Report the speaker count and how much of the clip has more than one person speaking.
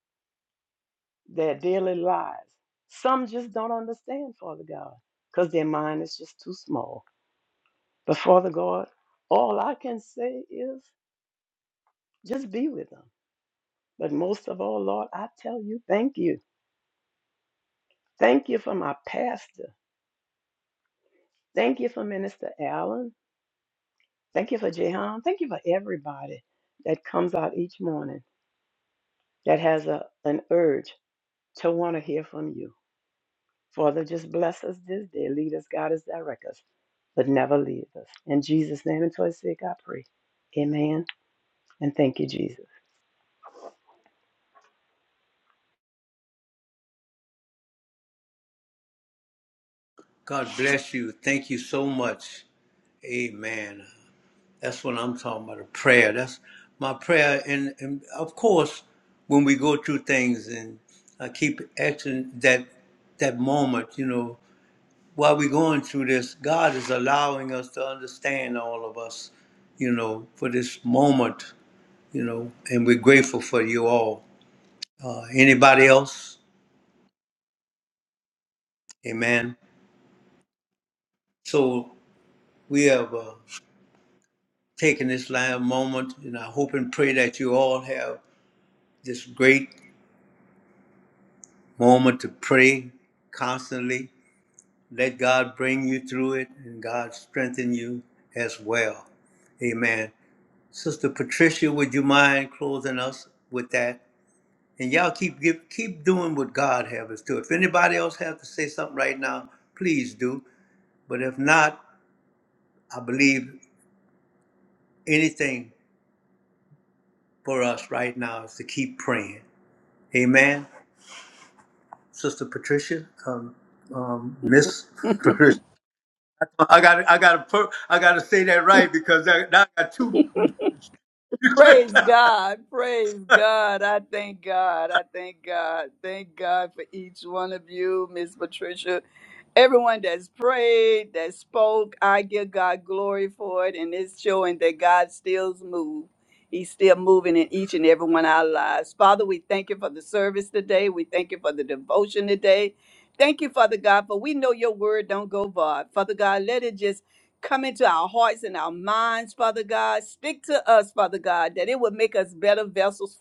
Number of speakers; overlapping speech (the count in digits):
3, no overlap